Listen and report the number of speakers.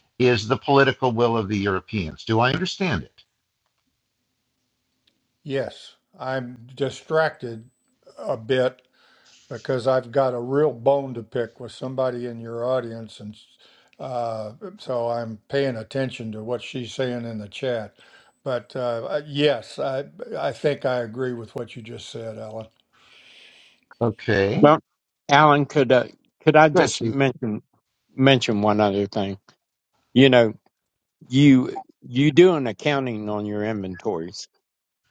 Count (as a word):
three